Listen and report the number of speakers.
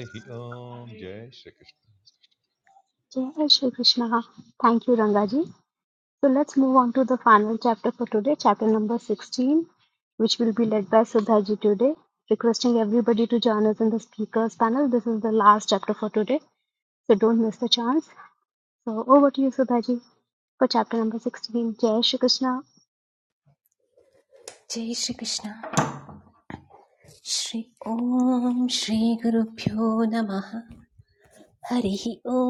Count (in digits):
3